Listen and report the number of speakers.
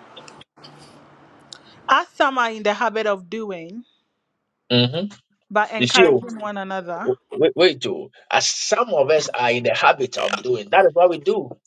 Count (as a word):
two